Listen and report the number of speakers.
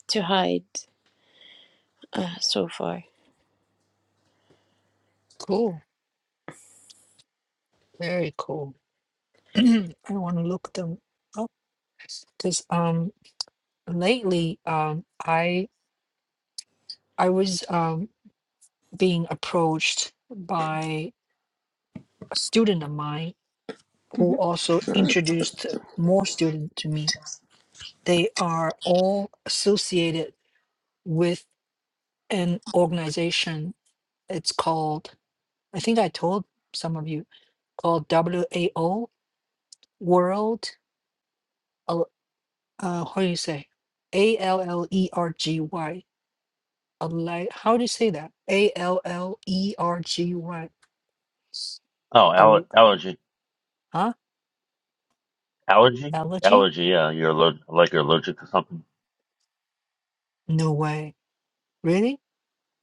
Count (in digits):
3